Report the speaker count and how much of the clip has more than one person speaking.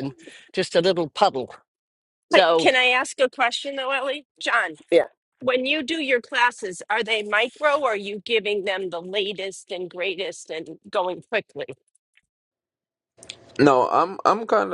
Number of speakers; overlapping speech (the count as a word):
three, about 3%